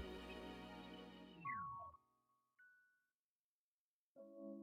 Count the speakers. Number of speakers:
zero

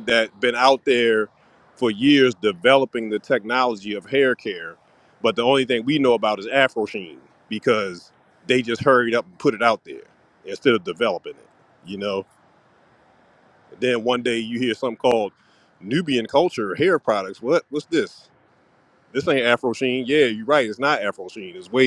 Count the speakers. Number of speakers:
one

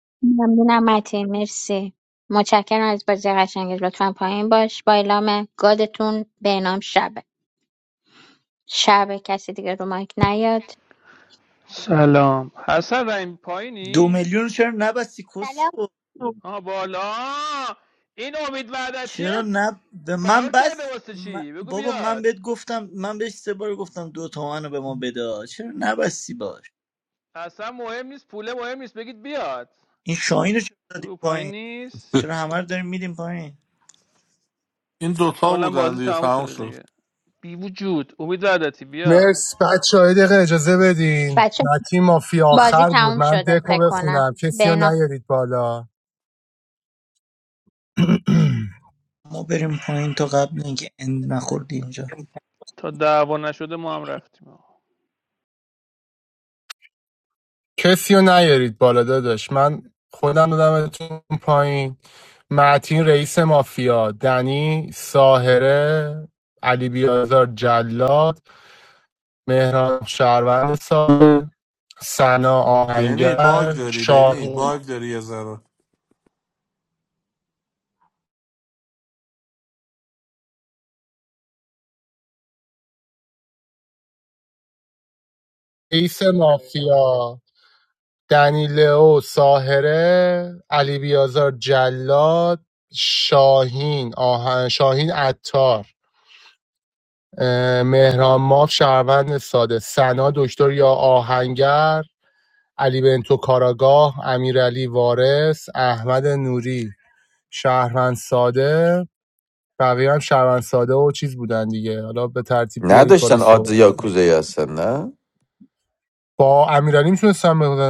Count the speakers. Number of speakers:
six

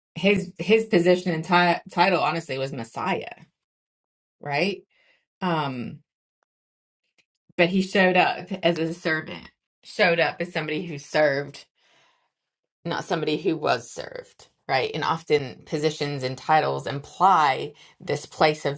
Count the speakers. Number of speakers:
one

